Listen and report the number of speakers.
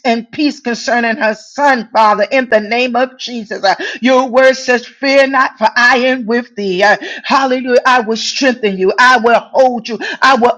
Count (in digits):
1